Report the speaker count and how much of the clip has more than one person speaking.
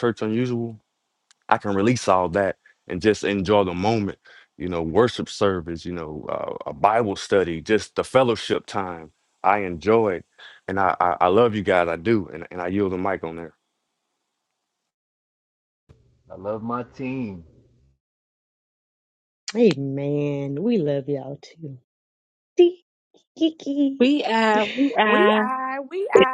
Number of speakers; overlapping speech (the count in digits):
5, about 2%